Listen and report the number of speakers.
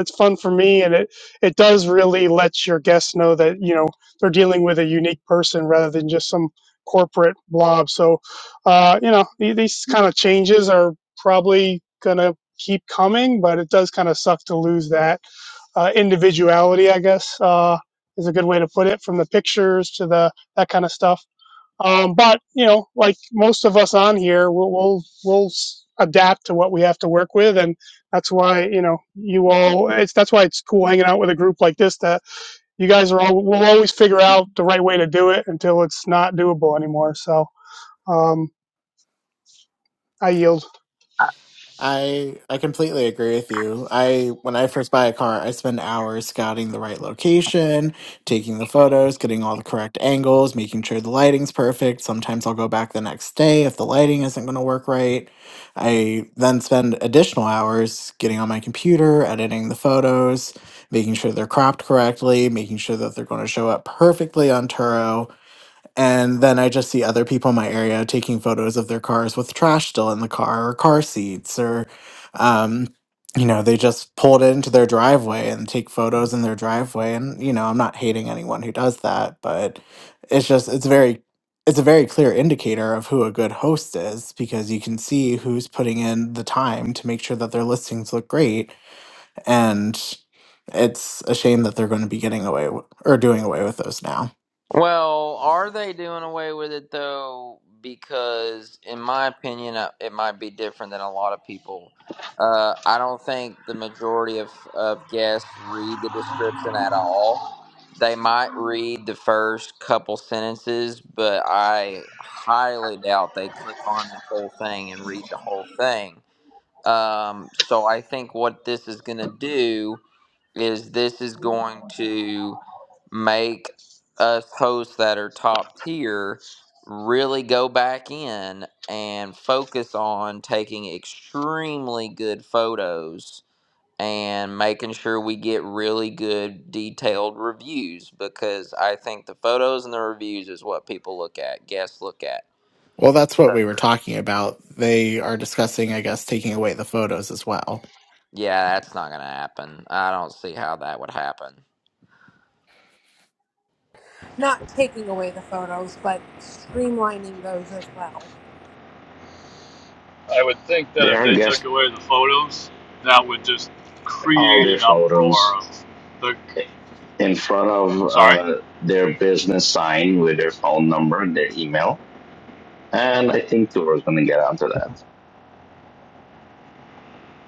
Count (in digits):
6